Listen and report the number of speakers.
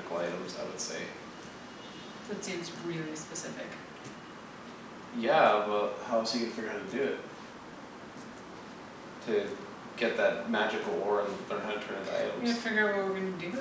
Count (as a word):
two